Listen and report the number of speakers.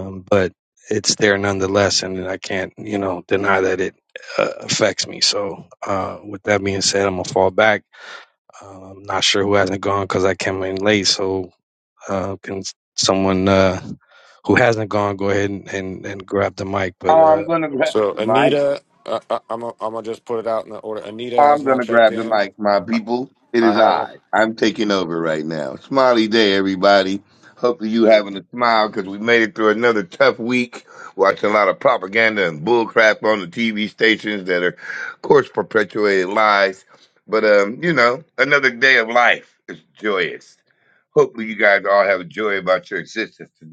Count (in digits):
3